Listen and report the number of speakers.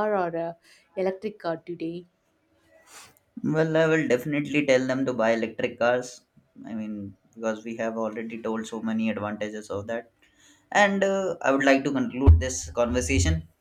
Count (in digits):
2